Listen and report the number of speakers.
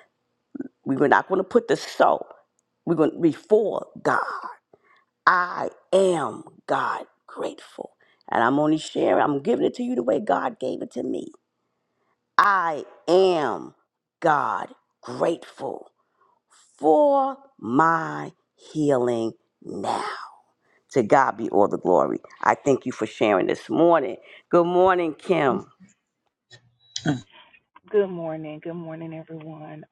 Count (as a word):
two